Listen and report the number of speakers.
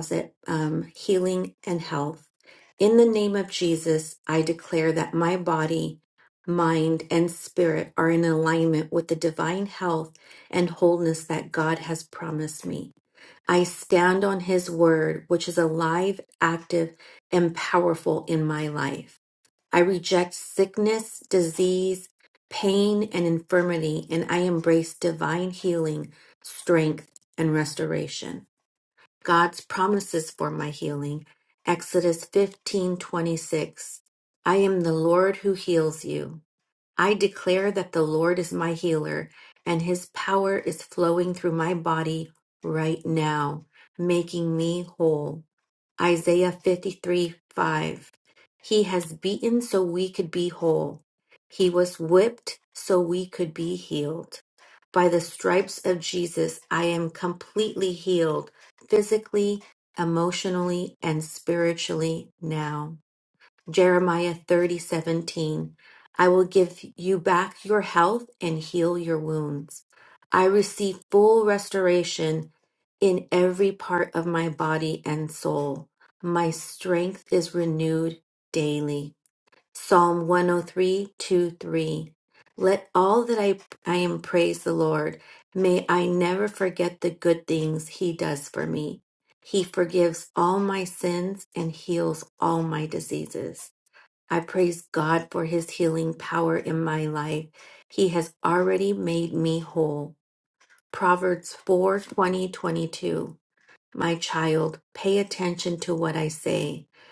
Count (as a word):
one